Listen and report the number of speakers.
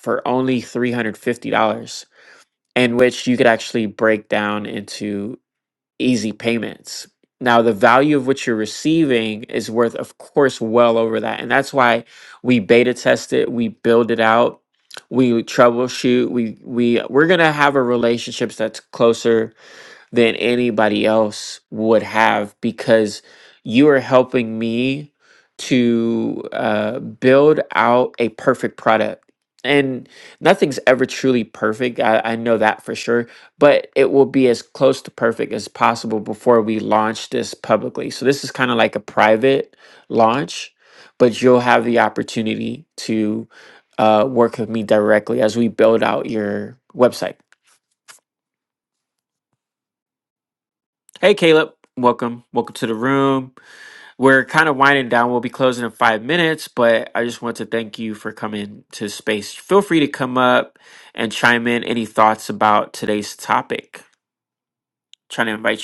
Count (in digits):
1